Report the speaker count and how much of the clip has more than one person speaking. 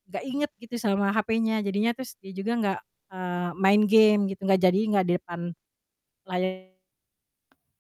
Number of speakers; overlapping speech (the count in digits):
1, no overlap